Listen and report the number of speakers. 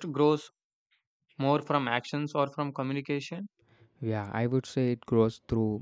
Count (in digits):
2